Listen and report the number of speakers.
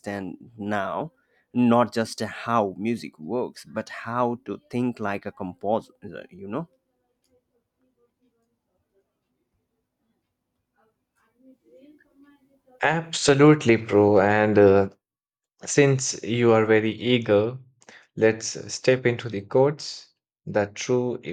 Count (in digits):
2